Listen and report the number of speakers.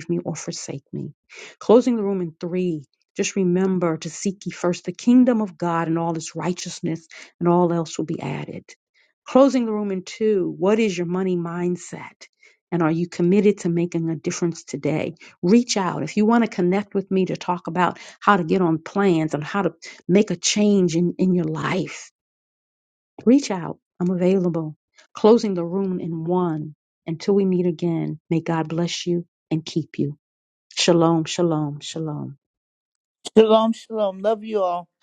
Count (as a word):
two